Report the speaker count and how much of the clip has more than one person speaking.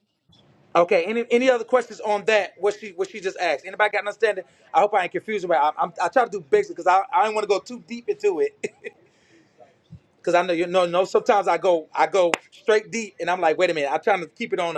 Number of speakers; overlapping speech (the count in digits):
1, no overlap